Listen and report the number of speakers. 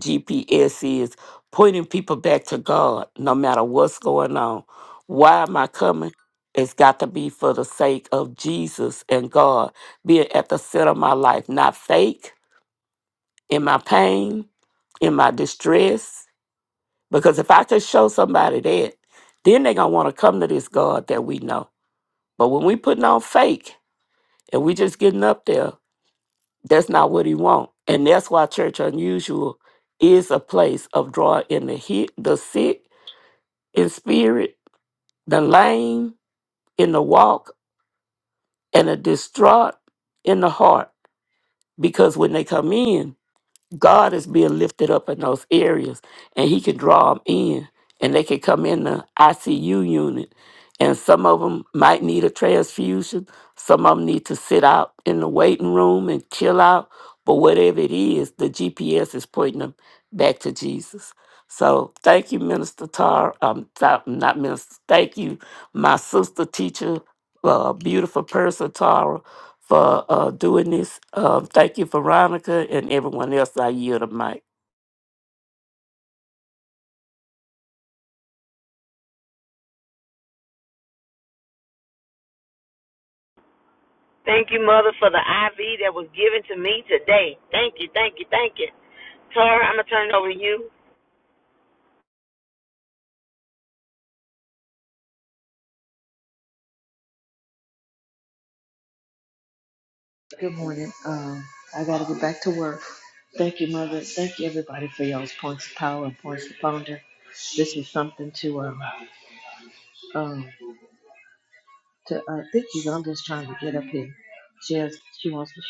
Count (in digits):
3